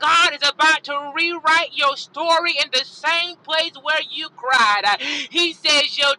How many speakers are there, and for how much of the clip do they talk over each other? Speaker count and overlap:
one, no overlap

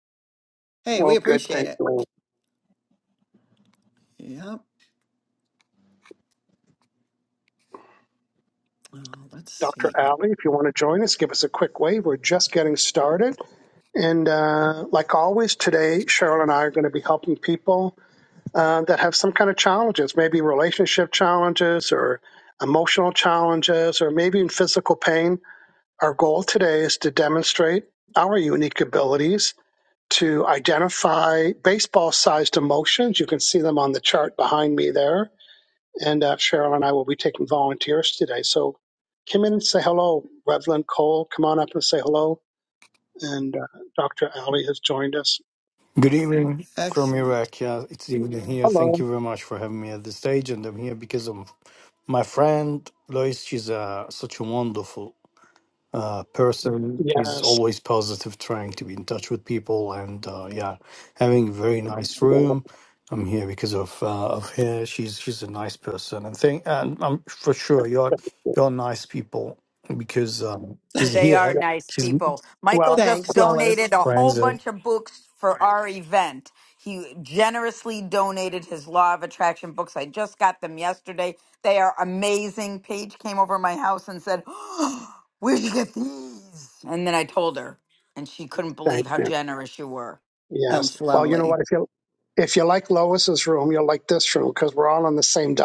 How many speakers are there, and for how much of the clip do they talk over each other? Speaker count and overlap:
four, about 7%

